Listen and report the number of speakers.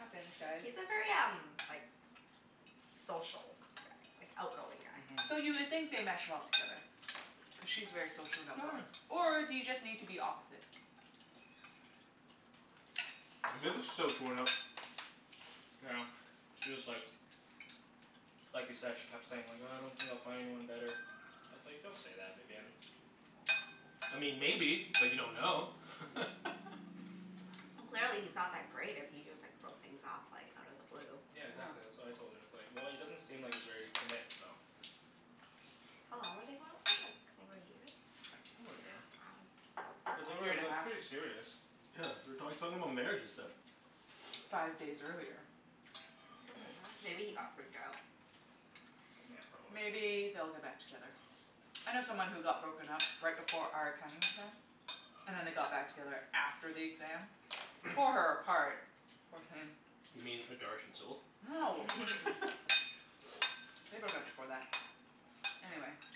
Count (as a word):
four